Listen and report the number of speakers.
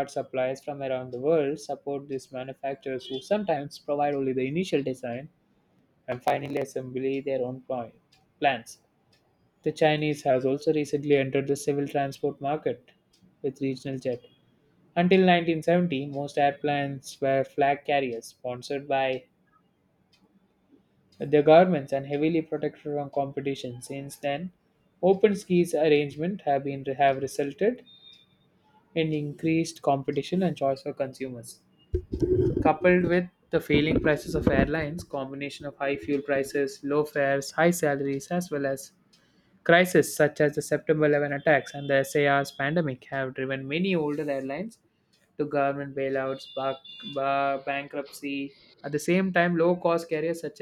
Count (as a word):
one